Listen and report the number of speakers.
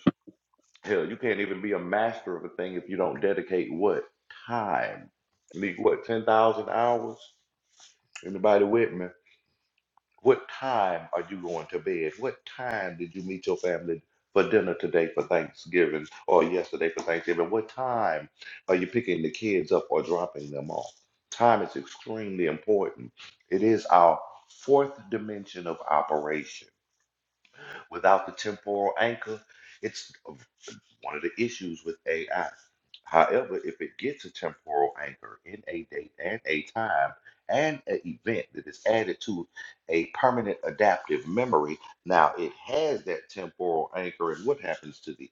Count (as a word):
one